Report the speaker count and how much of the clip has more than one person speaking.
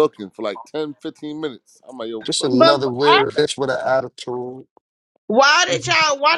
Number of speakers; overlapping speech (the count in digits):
3, about 16%